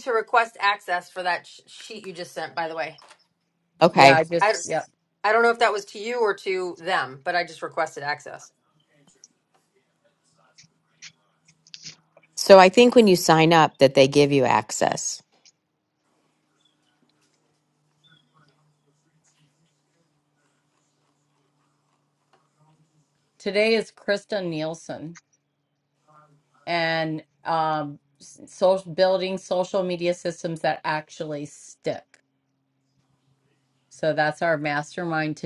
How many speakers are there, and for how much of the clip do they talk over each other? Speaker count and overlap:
3, about 1%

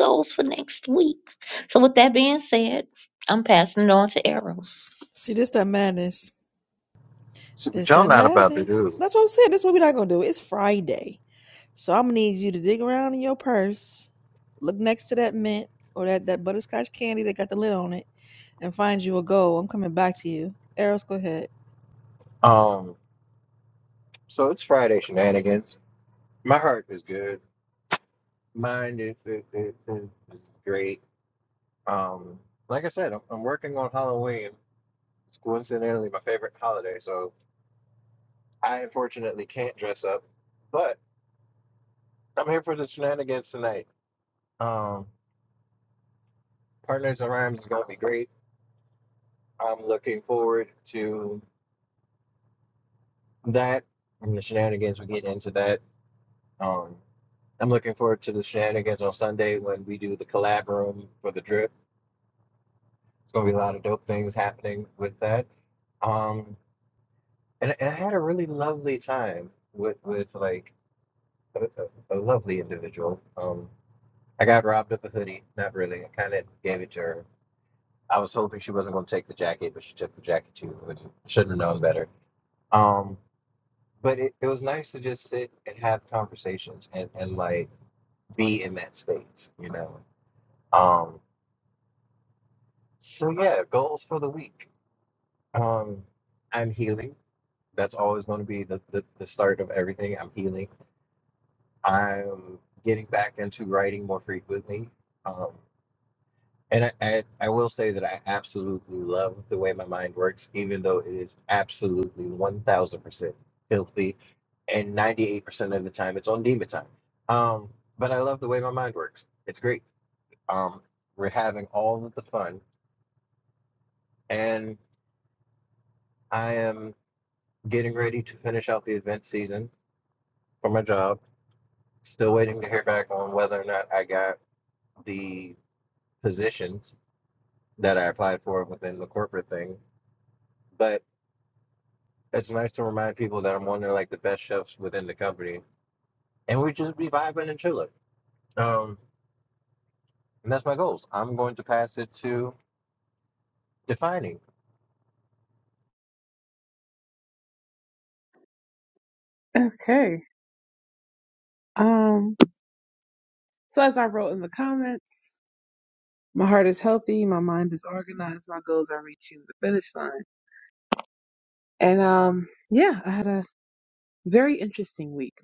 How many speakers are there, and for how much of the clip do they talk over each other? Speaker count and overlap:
4, about 1%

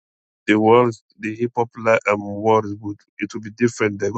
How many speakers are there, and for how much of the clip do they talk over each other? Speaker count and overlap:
1, no overlap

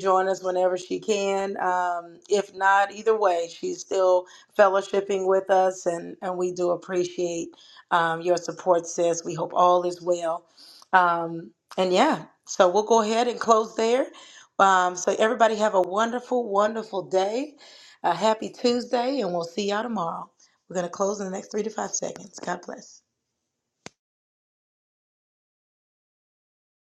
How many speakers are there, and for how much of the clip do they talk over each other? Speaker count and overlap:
1, no overlap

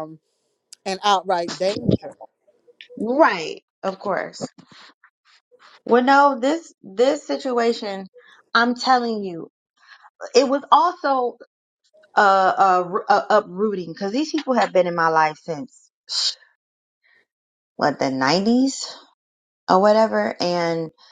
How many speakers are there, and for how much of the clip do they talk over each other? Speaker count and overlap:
2, no overlap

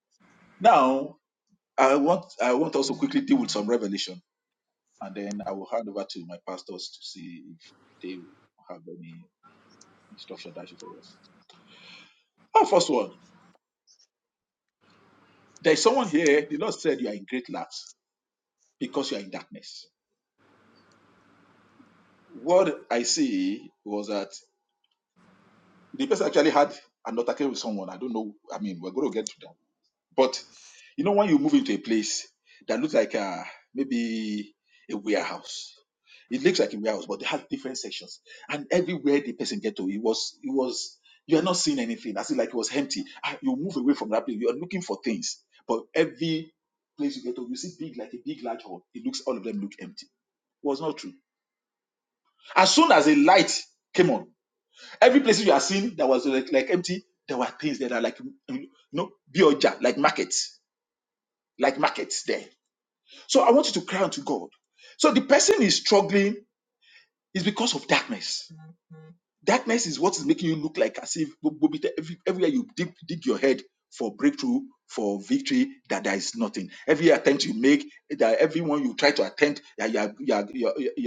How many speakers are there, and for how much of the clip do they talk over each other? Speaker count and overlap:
1, no overlap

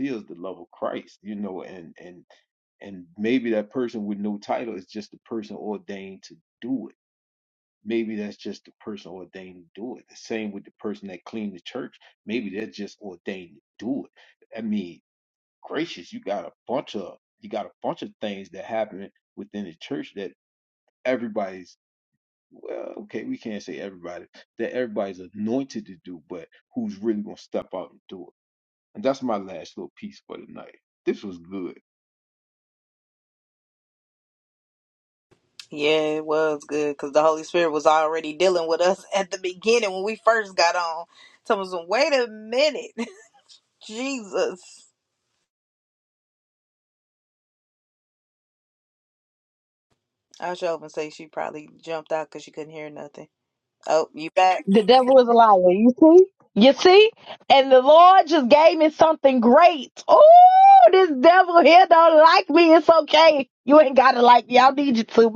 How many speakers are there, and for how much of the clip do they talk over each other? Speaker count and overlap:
3, no overlap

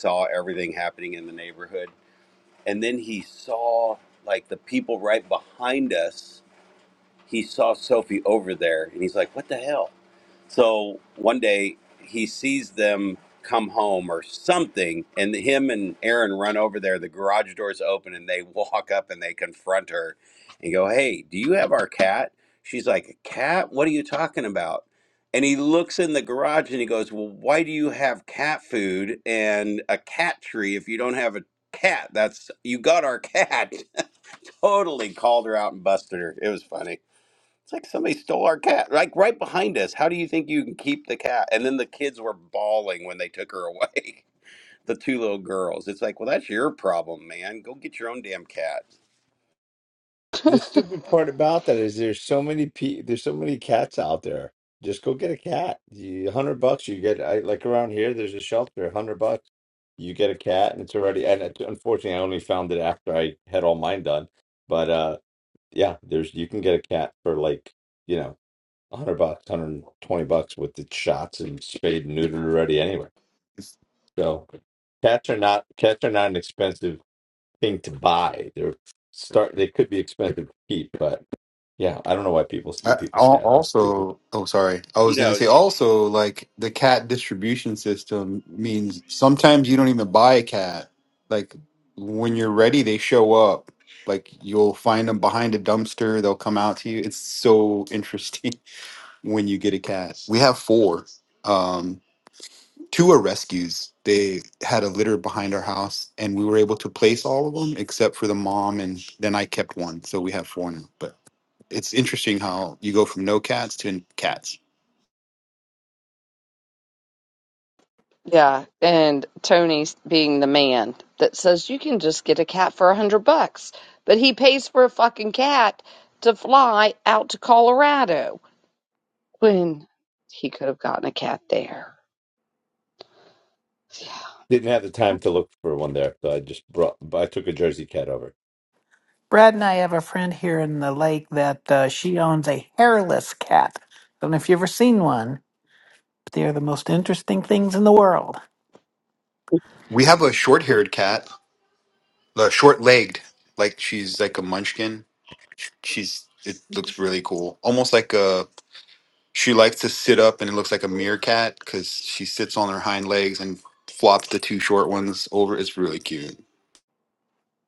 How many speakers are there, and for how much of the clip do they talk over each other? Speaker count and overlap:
5, about 1%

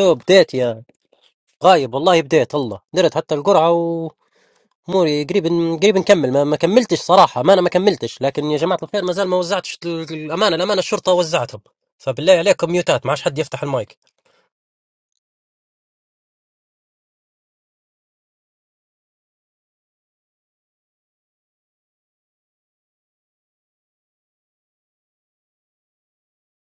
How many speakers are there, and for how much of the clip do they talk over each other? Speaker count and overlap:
1, no overlap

